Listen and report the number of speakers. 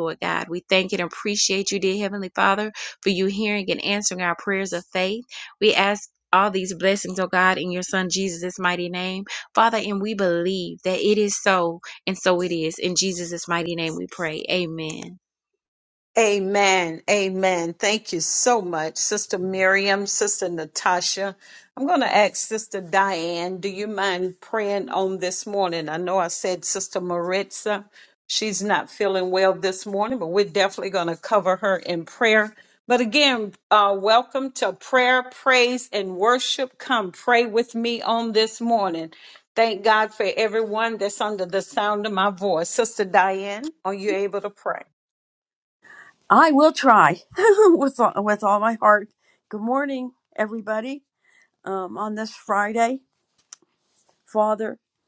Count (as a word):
three